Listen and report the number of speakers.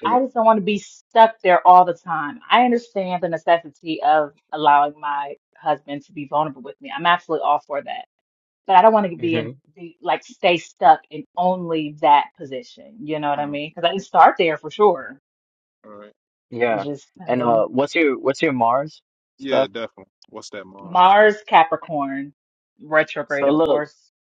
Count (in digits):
3